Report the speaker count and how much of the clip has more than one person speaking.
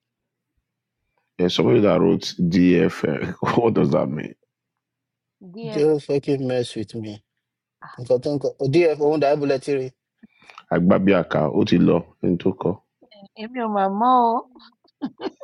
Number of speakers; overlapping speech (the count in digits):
3, about 1%